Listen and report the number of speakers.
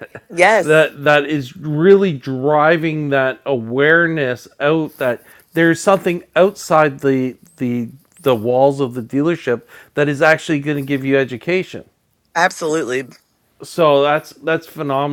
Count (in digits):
2